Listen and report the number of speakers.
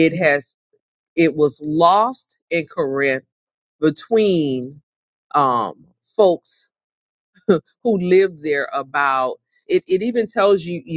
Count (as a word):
one